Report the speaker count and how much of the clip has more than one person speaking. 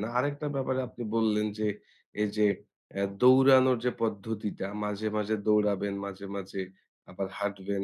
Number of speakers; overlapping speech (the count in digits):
1, no overlap